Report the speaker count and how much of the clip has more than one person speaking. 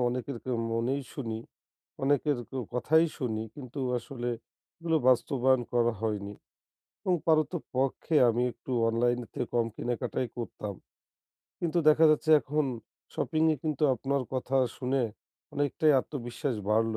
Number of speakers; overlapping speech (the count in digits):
1, no overlap